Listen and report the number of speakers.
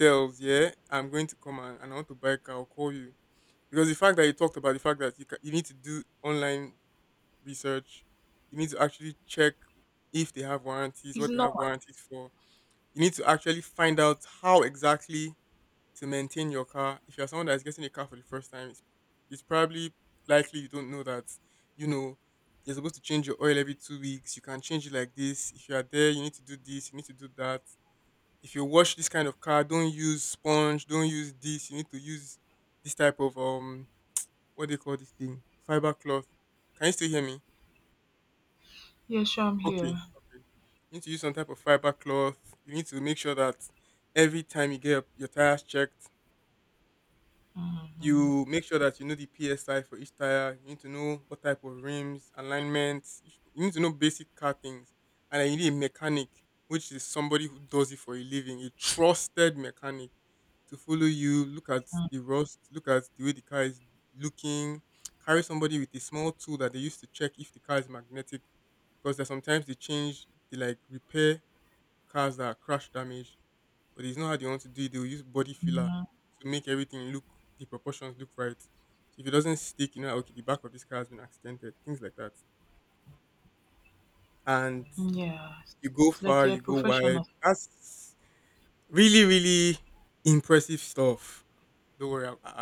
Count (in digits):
2